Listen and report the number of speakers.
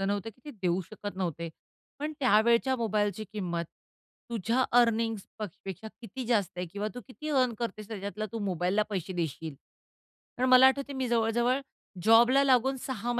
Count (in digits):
1